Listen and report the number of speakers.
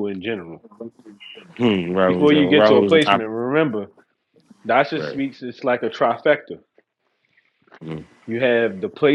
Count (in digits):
2